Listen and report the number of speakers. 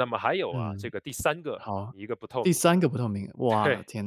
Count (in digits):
2